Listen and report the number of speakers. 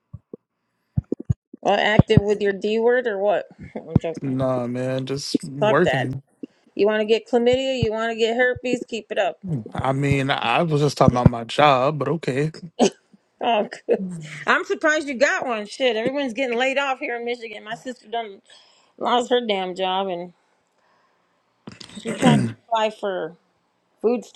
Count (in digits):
2